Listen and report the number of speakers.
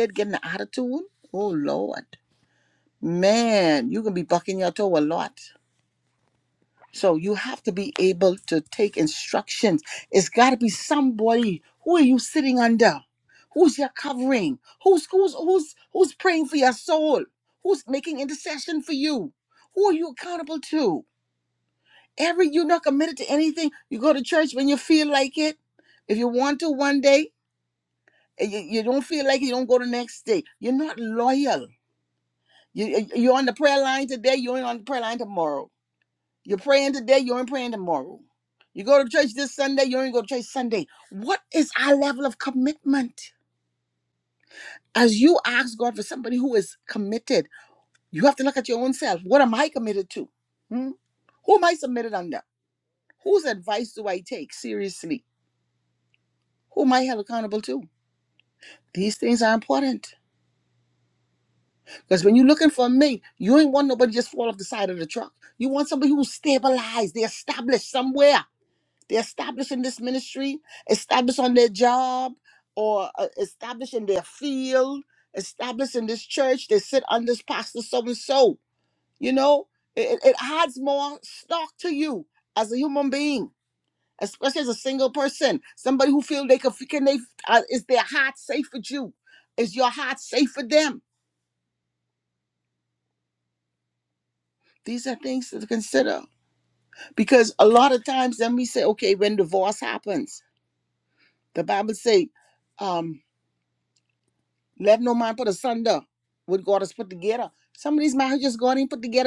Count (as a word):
one